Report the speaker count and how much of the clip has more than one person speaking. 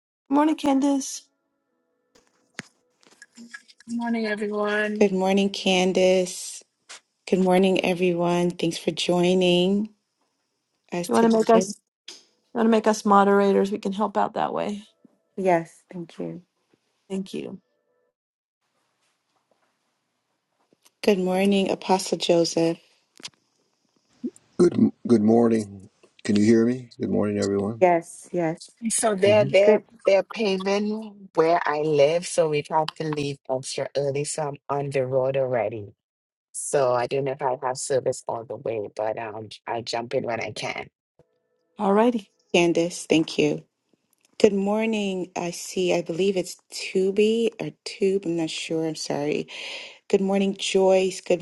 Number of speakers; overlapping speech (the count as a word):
four, about 2%